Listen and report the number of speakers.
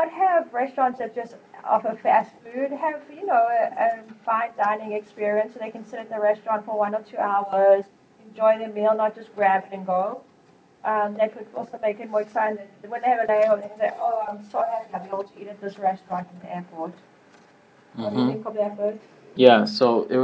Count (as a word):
two